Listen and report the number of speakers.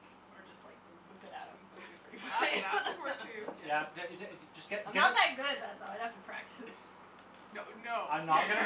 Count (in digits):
3